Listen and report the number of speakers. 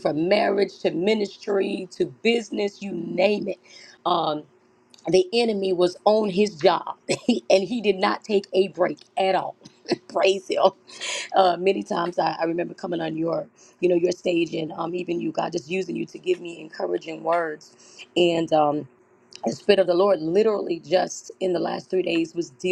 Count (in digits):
1